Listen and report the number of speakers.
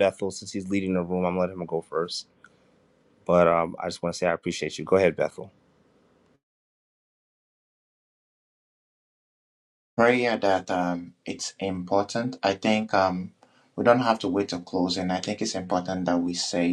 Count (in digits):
2